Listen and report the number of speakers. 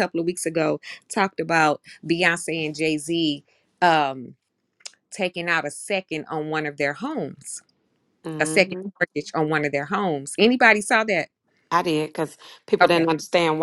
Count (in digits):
2